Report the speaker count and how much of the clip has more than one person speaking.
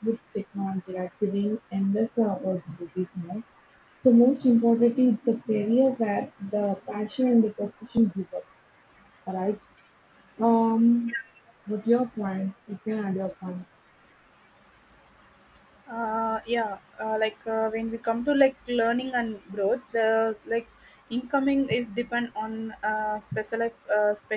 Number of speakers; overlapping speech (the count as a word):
two, no overlap